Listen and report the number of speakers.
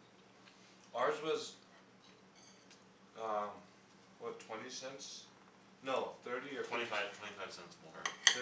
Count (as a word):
two